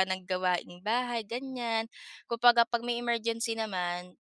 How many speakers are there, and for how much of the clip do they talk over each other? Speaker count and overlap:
1, no overlap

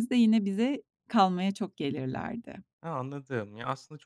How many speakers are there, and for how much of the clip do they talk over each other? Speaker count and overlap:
2, no overlap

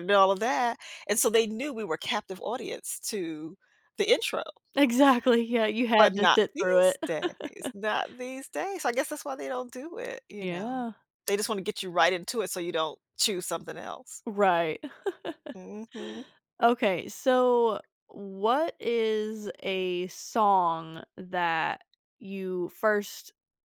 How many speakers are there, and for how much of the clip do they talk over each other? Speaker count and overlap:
2, about 6%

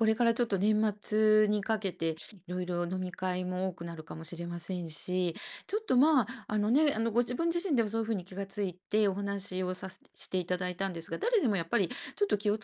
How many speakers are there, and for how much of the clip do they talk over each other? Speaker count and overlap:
1, no overlap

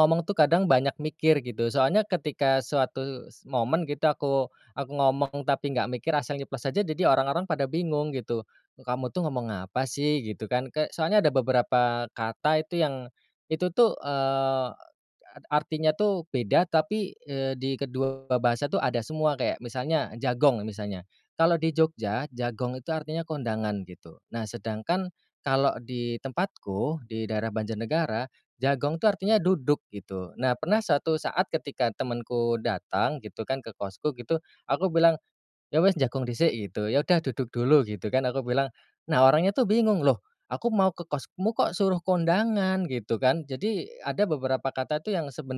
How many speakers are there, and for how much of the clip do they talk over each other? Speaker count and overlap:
1, no overlap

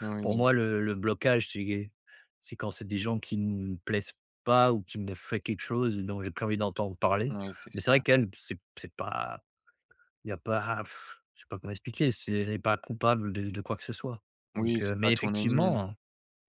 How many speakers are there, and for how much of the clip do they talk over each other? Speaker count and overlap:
2, about 10%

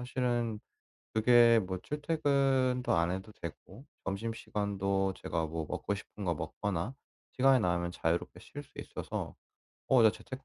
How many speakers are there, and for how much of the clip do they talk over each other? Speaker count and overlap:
1, no overlap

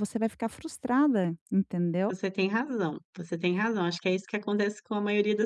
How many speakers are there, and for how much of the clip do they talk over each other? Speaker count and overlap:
2, about 1%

